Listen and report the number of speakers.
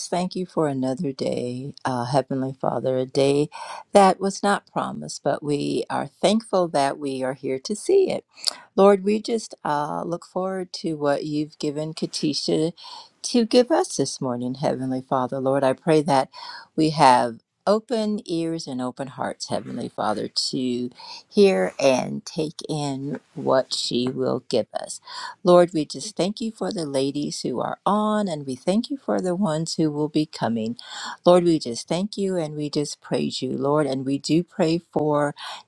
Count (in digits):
1